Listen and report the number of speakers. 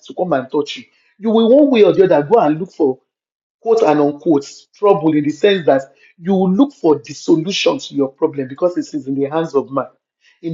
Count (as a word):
one